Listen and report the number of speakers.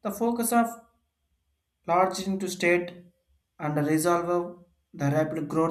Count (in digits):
1